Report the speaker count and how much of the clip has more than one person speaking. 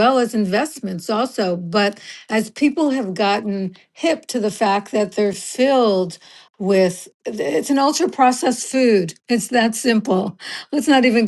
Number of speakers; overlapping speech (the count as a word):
one, no overlap